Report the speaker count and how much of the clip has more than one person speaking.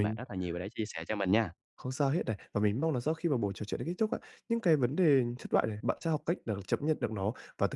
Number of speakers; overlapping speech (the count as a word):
two, about 2%